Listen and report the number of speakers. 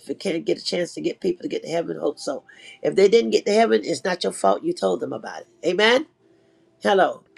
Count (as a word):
one